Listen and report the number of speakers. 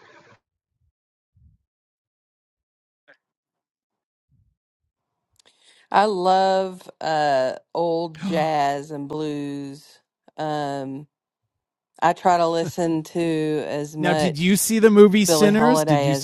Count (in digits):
2